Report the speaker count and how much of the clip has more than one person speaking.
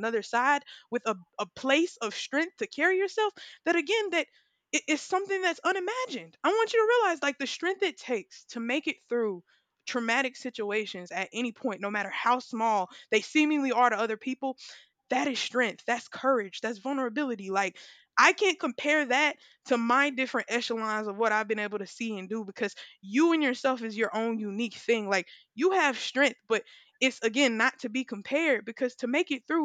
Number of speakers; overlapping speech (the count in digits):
1, no overlap